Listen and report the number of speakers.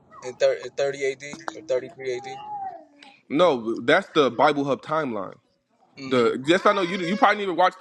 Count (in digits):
2